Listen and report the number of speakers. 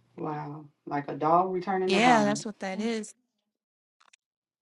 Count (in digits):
2